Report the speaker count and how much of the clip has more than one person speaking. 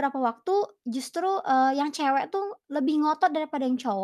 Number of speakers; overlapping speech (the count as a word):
one, no overlap